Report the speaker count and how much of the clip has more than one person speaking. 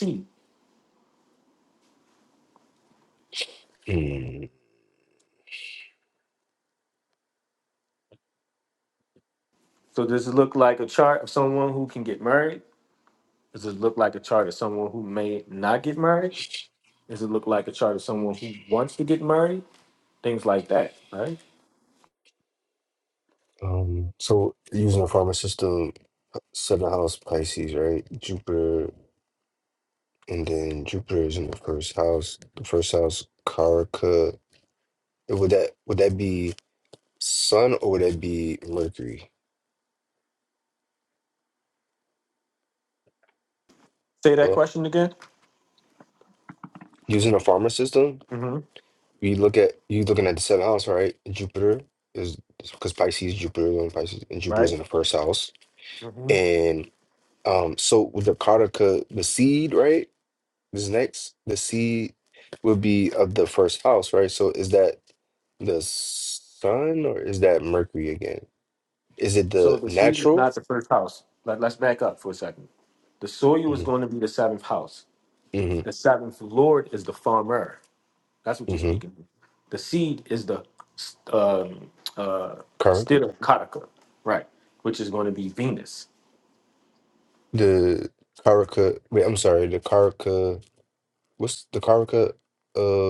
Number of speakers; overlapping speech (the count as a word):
two, about 2%